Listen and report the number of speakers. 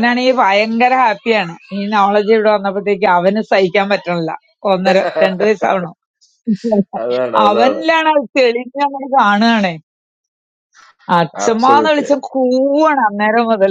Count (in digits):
2